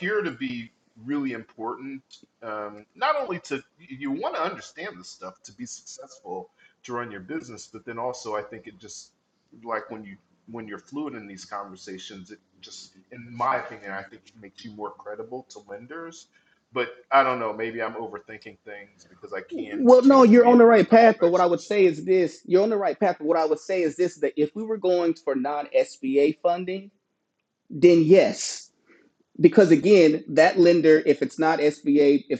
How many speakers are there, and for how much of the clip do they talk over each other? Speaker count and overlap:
two, about 7%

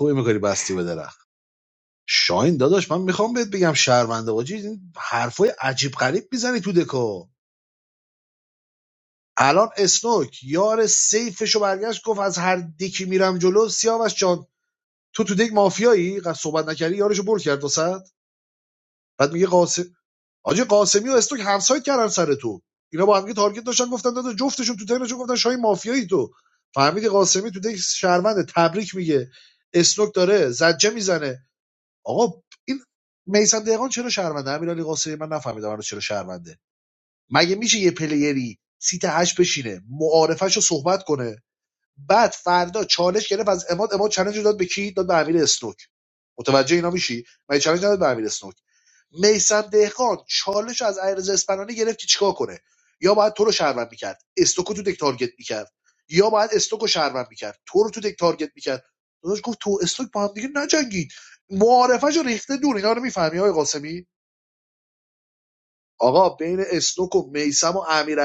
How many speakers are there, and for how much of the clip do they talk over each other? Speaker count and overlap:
one, no overlap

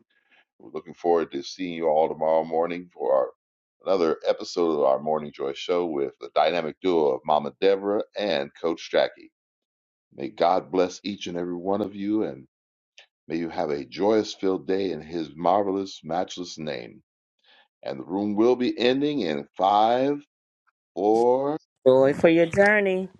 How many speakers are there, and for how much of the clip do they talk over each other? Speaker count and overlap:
two, no overlap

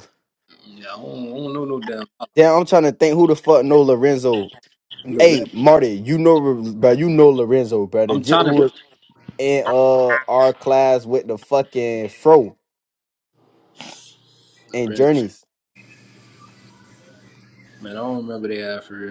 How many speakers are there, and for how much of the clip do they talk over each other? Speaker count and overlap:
two, about 5%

